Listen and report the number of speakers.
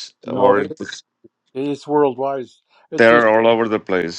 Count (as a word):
two